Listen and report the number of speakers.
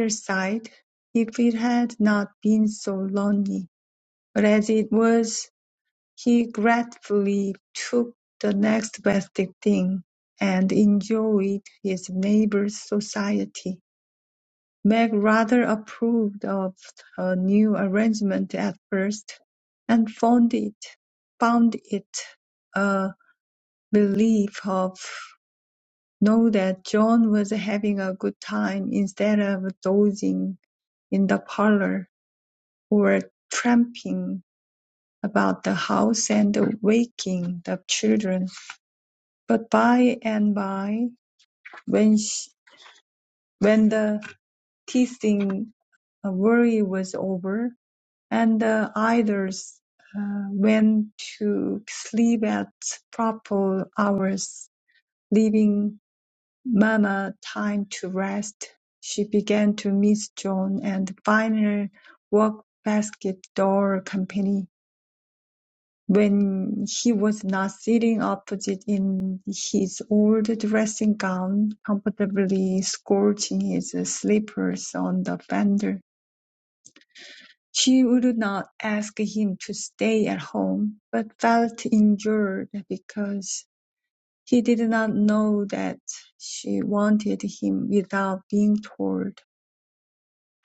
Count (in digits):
1